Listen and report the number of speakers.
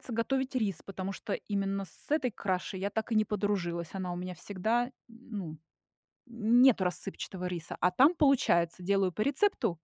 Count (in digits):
1